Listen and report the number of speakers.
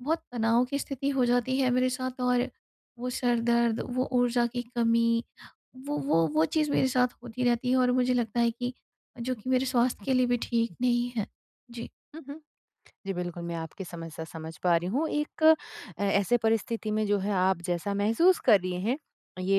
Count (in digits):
2